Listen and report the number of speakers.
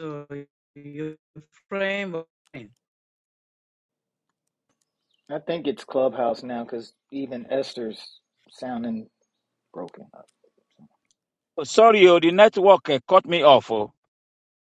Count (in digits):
3